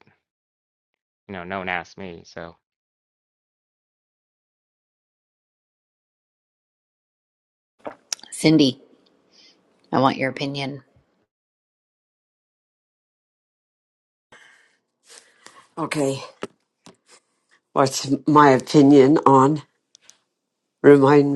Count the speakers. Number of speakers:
3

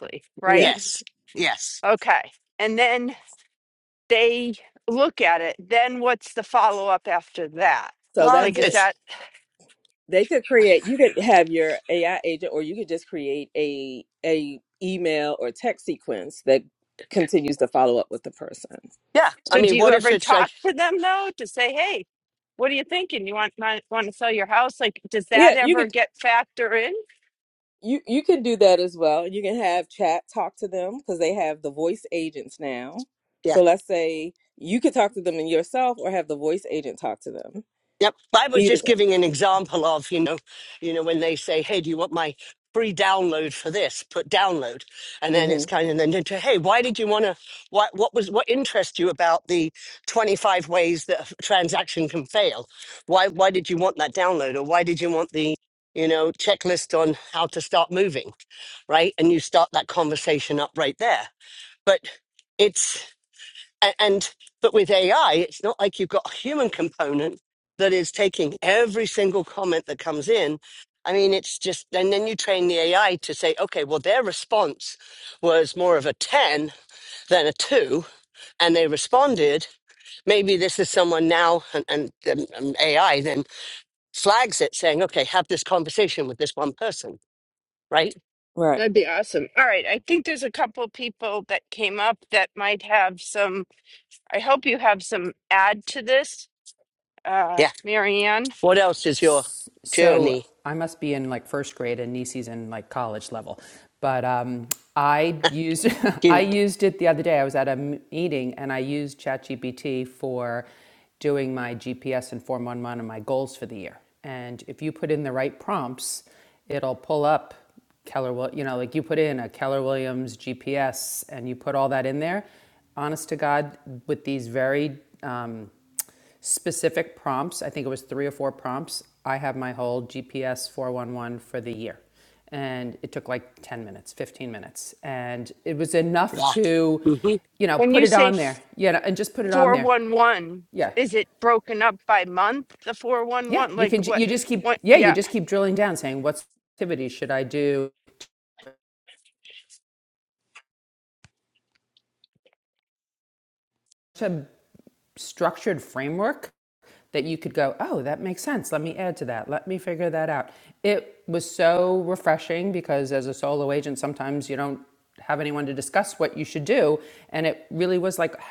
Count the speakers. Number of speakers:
4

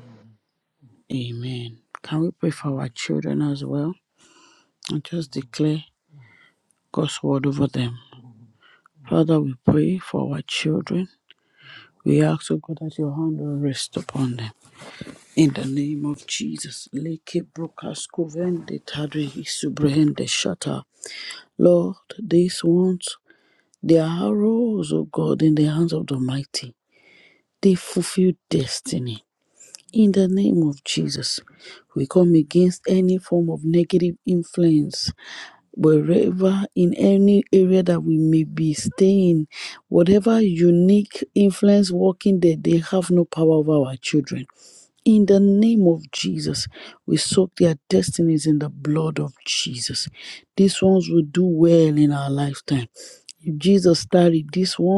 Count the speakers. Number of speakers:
1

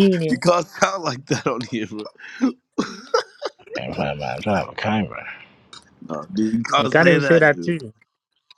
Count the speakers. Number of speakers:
3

